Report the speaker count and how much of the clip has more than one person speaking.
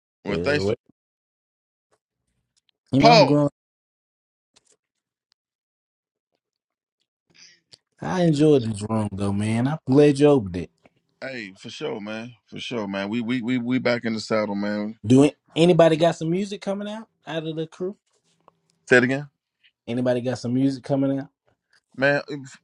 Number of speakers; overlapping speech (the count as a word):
two, about 4%